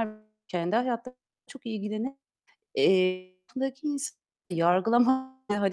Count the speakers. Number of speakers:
1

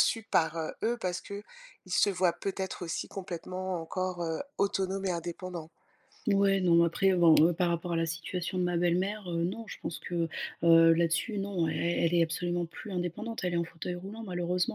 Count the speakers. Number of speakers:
2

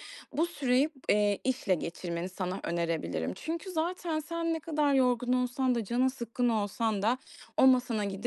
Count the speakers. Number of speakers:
1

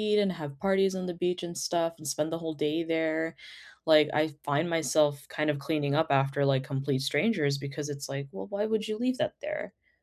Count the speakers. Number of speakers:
1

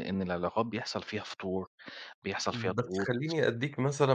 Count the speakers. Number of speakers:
2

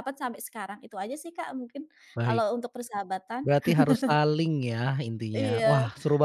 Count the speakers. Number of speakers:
2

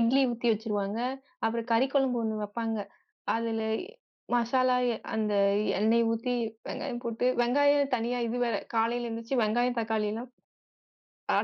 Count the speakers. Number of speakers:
1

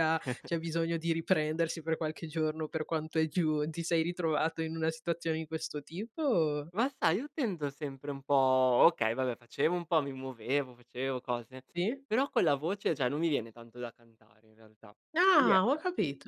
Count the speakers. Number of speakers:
2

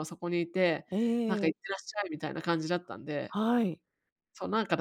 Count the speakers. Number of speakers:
2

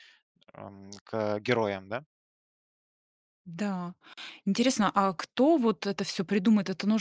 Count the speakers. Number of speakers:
2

